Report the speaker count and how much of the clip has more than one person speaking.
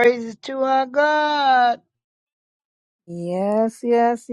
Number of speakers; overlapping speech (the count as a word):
two, no overlap